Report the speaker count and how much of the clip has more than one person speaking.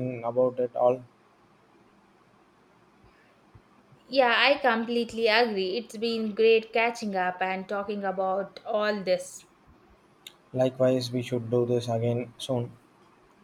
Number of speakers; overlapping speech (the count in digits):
2, no overlap